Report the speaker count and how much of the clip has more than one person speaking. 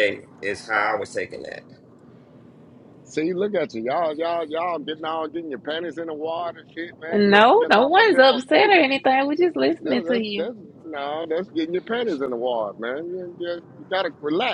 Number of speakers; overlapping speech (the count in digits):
3, about 16%